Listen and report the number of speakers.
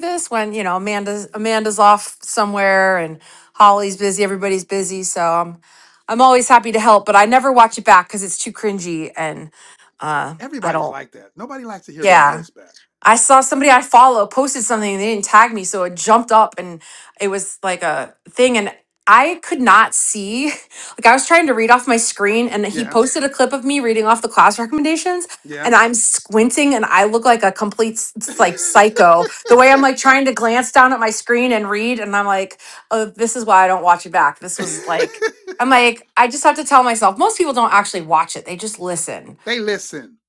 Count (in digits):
2